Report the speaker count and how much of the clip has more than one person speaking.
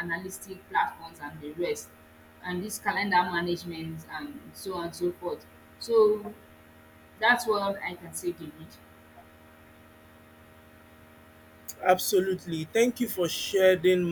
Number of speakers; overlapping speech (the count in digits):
2, no overlap